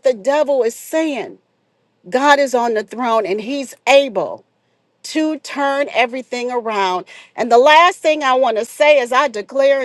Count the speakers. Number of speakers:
1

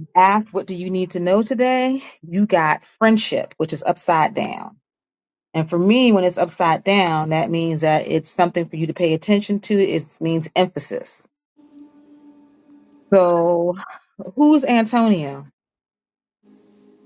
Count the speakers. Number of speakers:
1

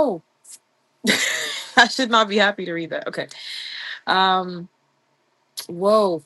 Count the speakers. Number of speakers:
1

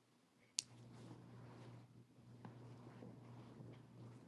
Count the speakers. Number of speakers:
0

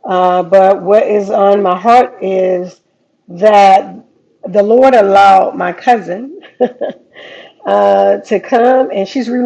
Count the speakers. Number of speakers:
1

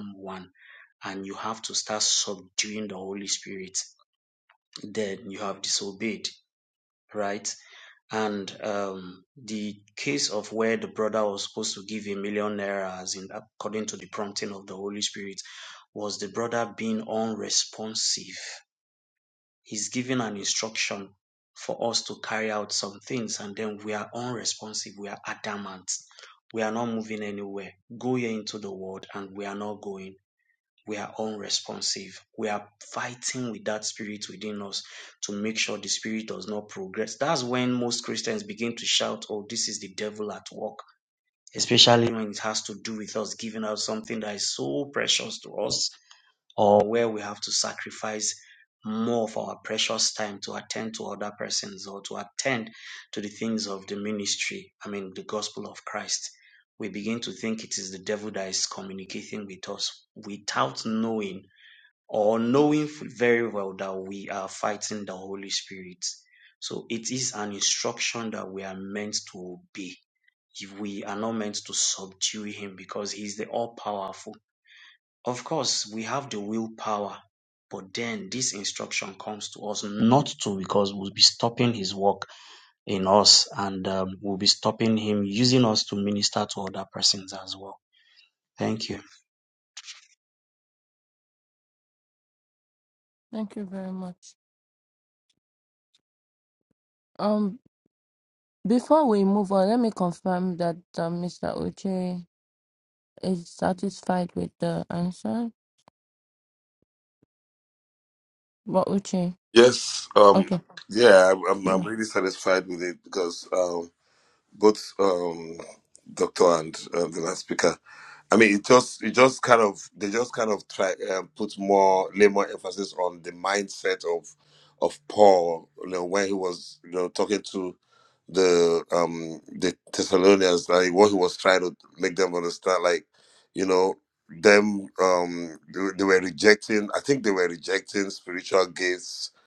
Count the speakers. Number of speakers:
3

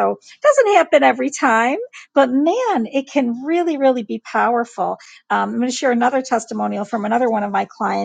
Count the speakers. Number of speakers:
1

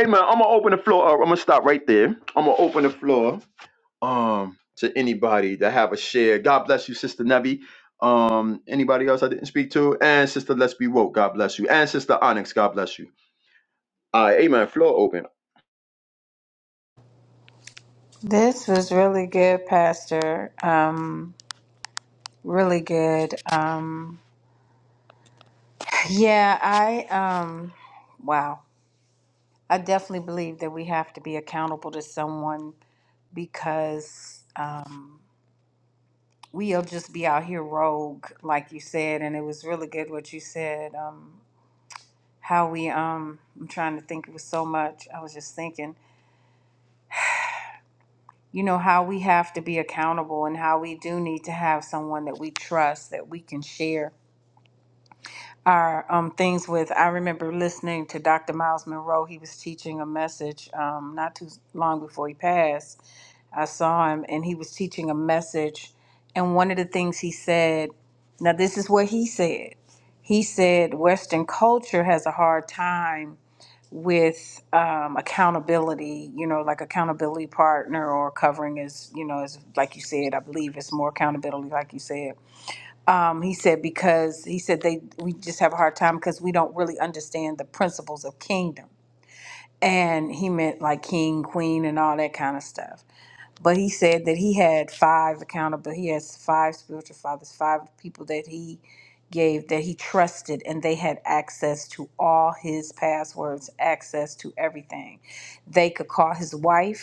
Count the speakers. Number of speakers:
2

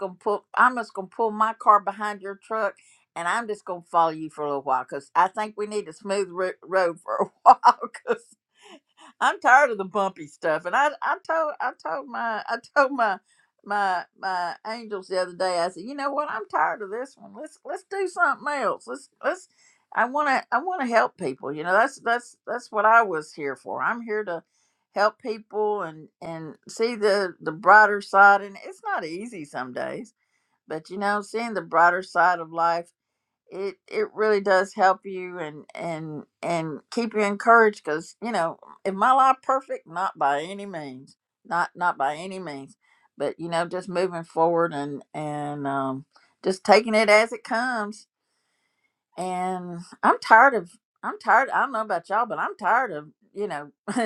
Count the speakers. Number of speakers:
1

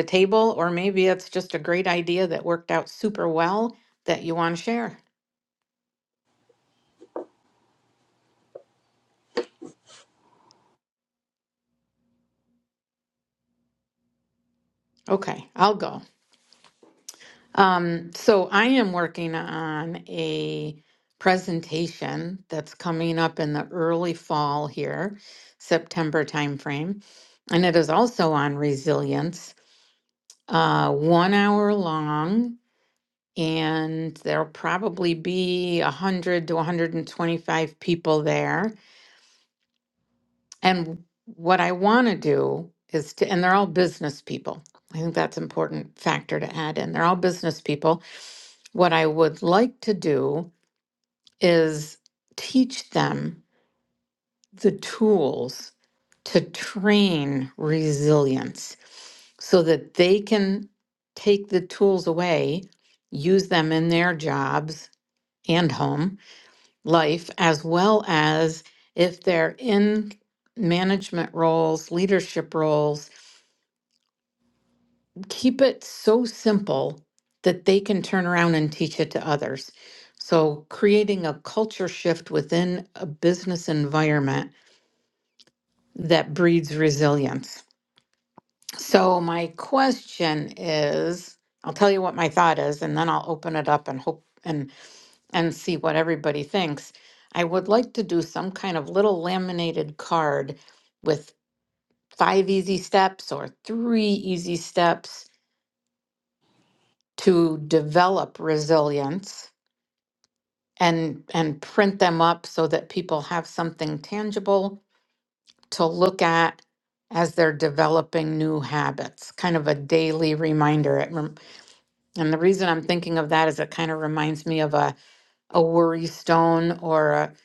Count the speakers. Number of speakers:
1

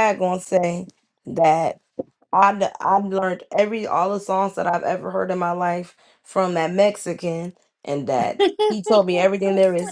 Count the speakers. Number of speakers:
1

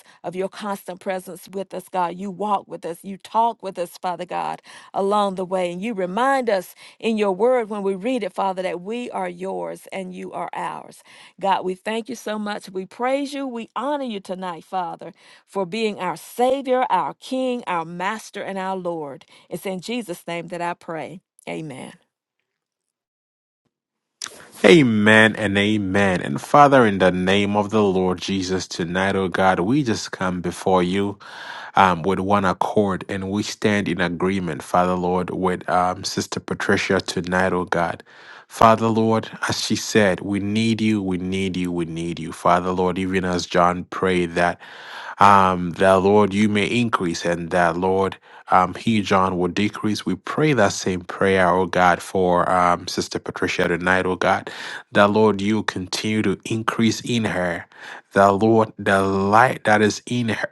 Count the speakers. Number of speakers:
2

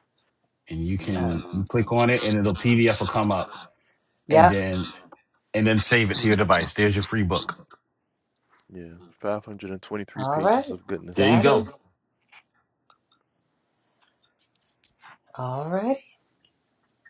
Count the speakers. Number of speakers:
3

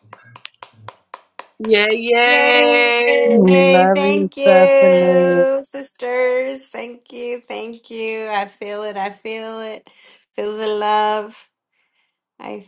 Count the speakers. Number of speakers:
3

